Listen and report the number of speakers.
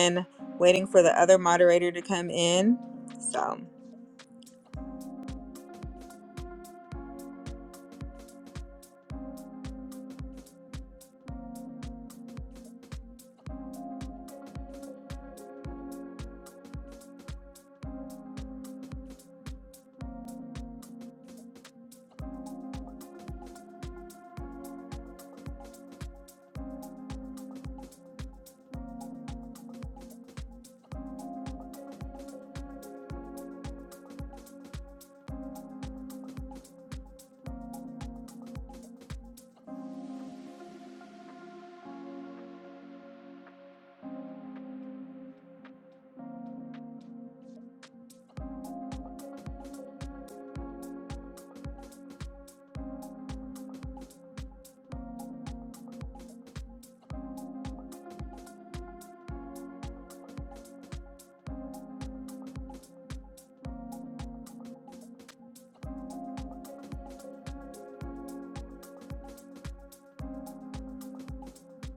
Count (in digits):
1